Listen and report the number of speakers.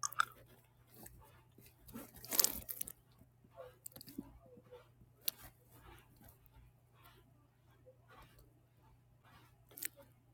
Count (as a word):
zero